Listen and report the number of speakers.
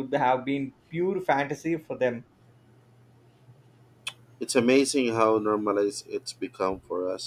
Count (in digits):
2